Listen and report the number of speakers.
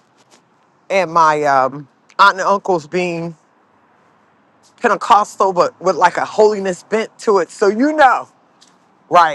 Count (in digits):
1